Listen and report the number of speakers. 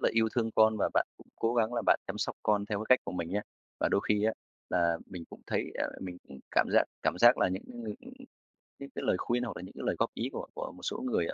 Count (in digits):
1